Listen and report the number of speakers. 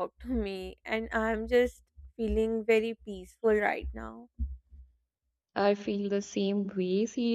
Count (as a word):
two